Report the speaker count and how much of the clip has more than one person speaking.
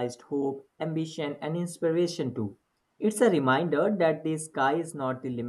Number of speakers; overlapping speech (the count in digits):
1, no overlap